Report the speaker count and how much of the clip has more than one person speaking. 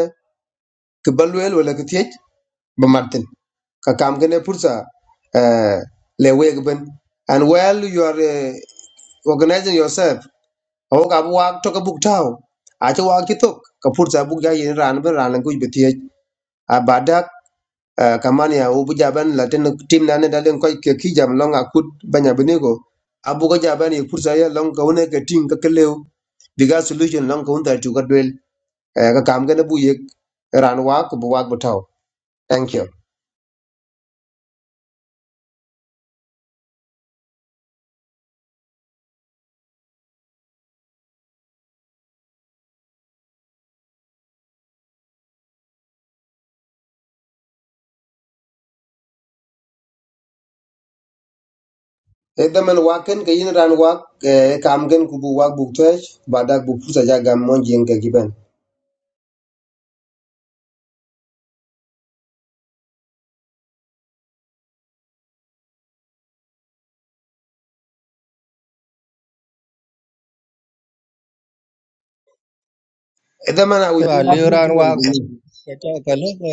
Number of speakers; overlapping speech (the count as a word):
two, no overlap